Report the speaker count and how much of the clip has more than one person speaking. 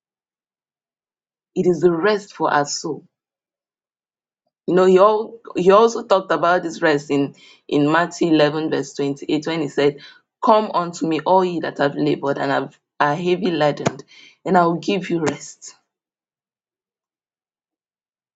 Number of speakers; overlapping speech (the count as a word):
one, no overlap